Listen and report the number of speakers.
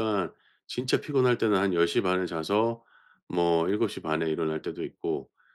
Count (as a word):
one